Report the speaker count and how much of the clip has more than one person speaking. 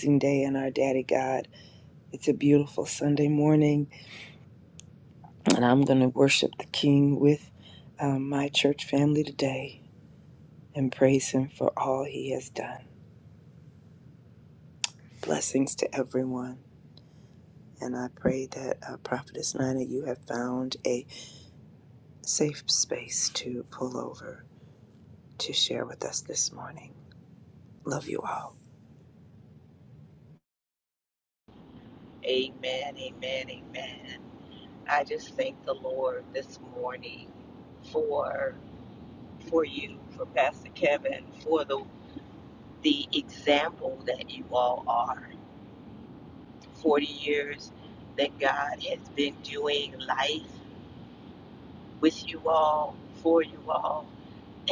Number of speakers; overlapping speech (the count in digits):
2, no overlap